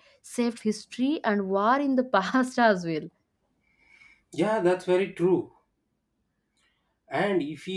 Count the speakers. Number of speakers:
2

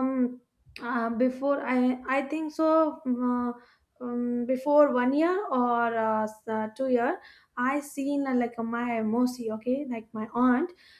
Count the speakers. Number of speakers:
1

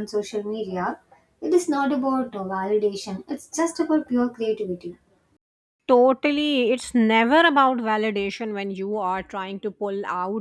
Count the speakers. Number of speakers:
2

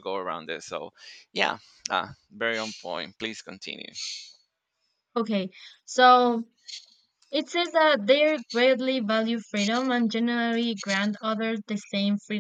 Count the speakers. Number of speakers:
2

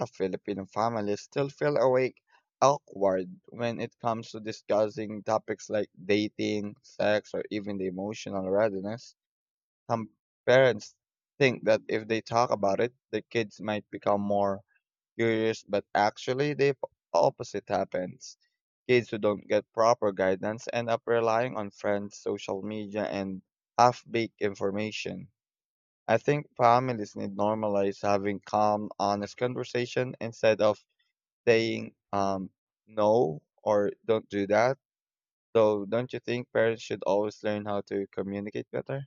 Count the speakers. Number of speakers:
1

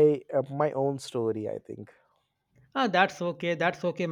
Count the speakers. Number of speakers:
2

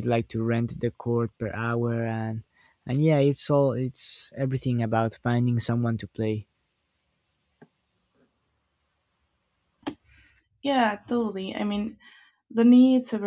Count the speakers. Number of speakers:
2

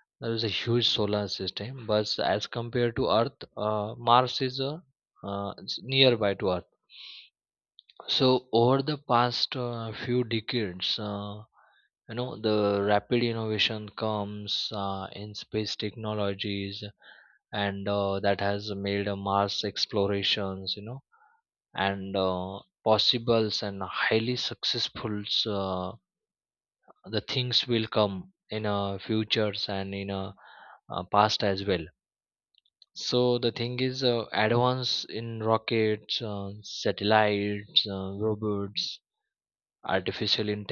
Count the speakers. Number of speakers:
1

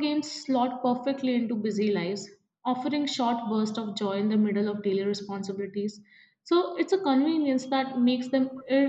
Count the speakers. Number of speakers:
1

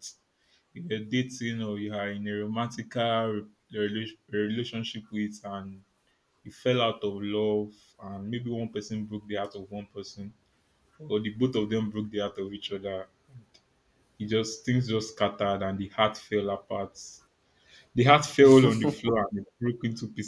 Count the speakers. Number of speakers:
1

